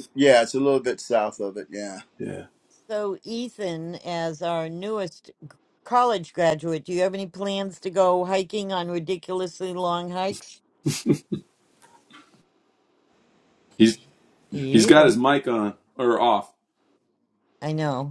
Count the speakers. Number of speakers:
3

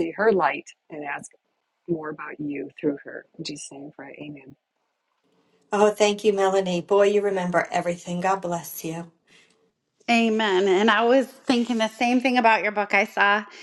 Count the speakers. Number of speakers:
3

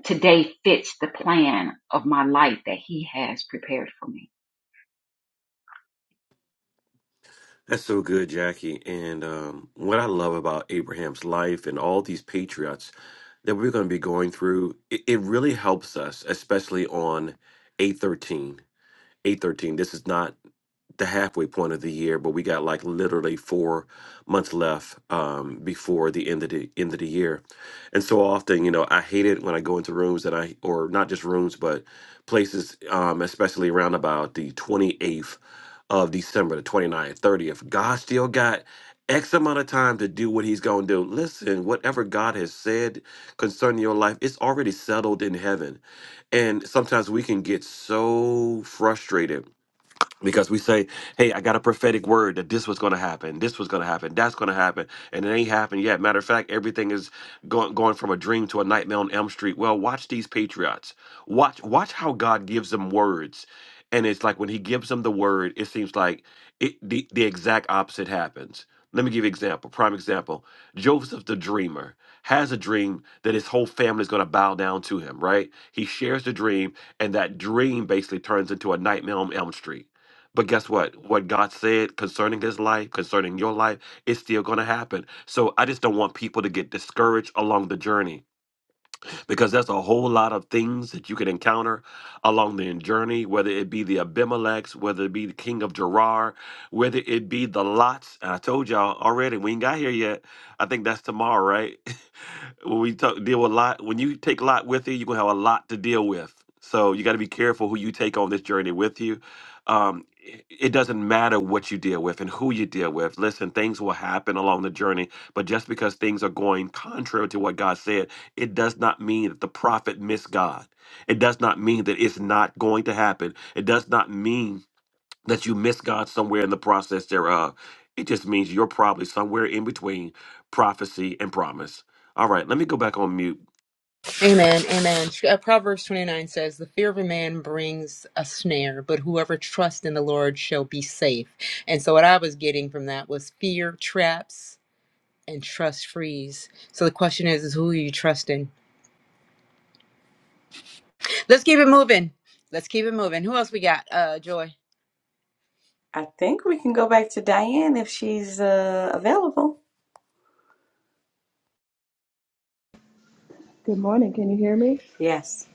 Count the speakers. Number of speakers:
5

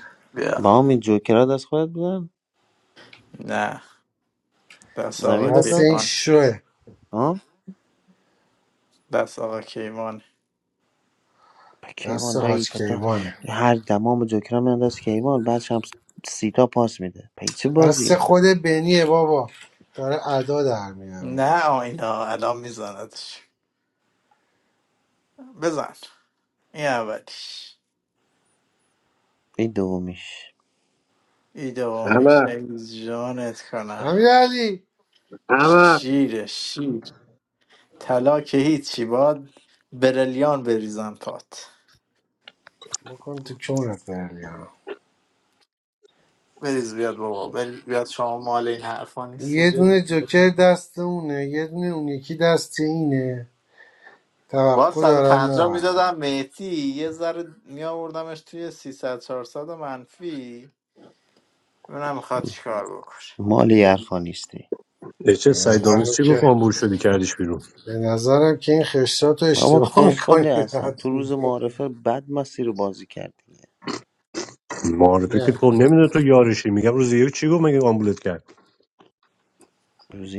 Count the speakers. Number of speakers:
4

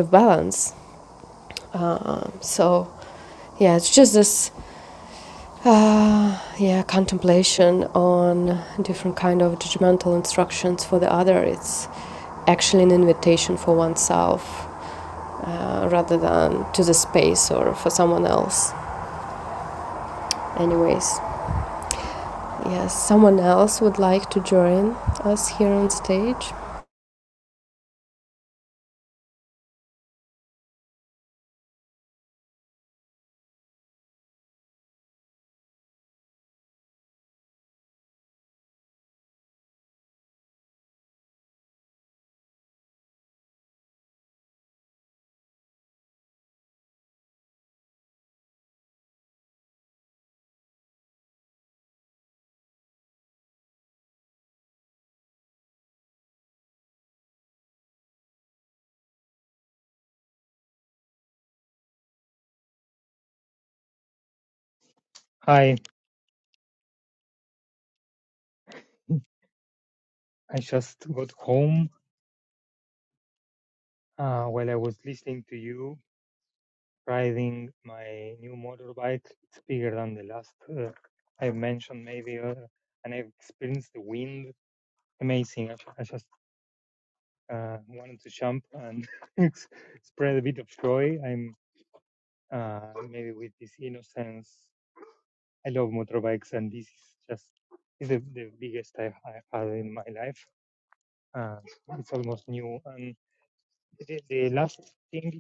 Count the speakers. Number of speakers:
2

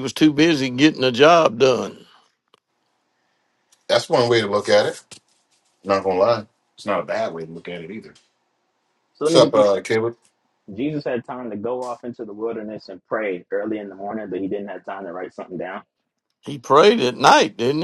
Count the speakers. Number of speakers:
3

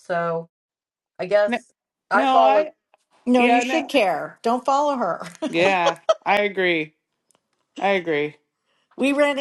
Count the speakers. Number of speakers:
3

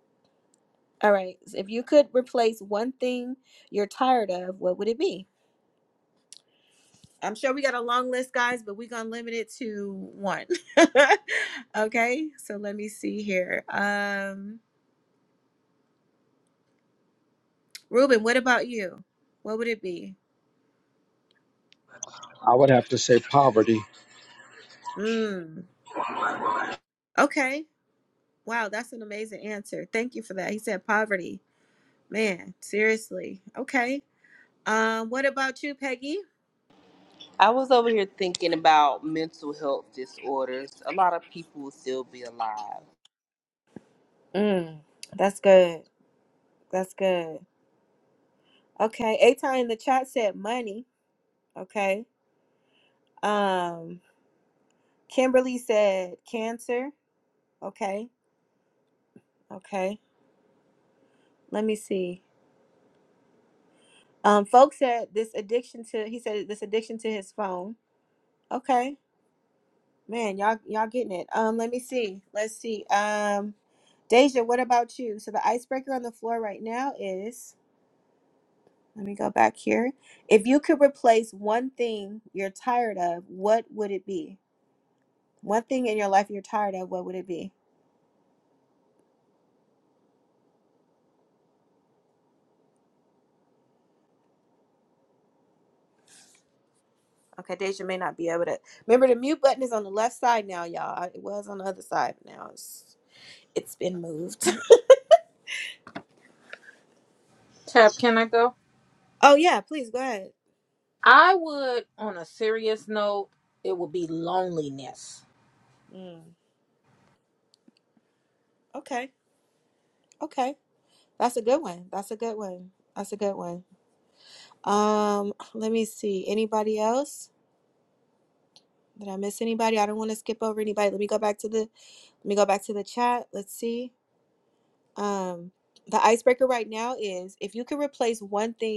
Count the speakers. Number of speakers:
4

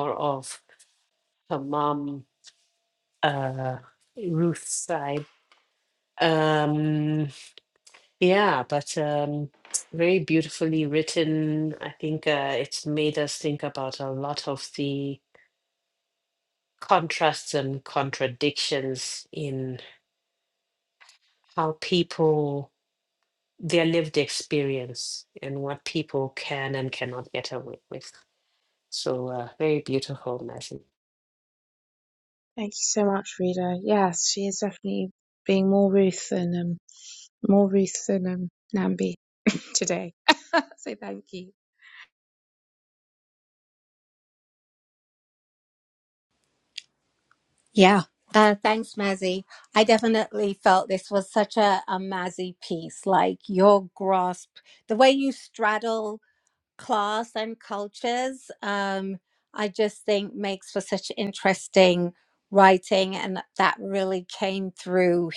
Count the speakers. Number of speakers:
3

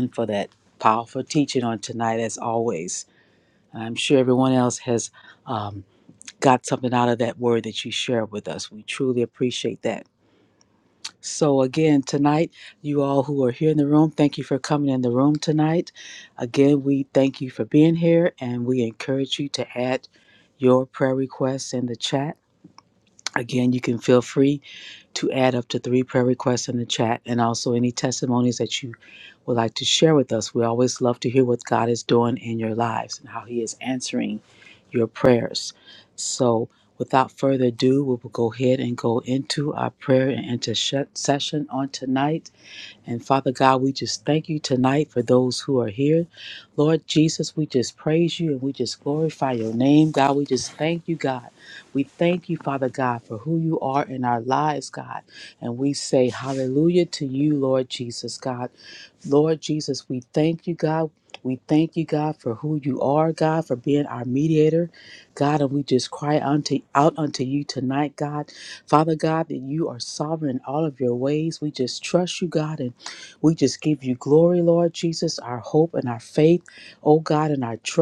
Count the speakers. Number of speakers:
1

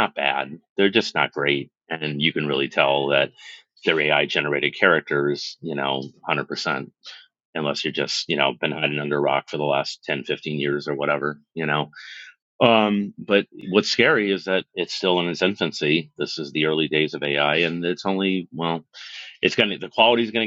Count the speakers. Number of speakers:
1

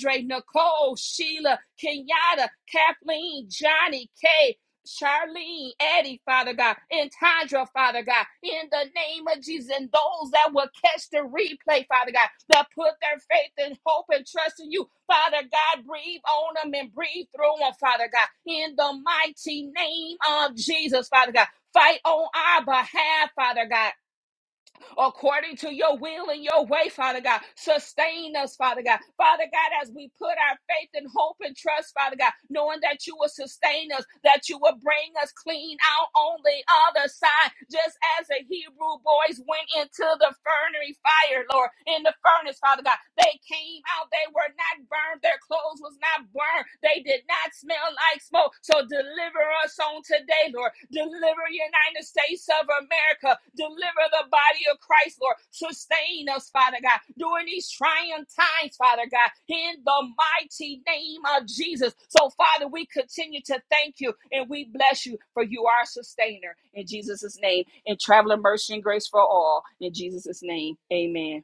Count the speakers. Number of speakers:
1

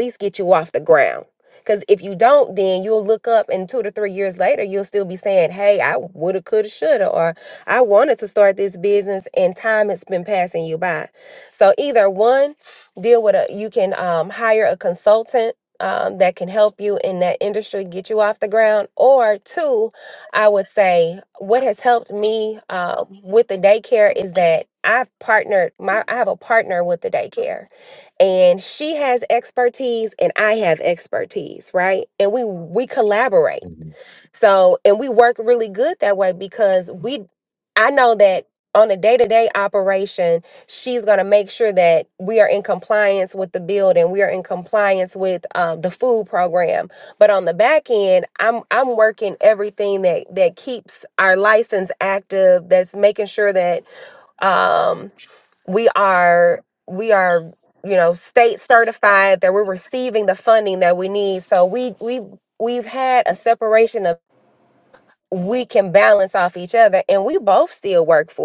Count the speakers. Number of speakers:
1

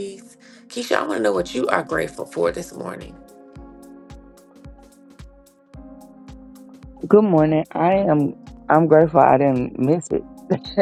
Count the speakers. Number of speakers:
2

